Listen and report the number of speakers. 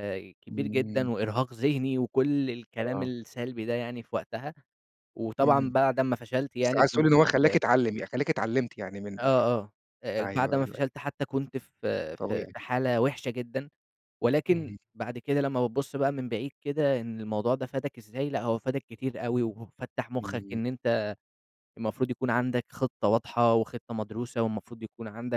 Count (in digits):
2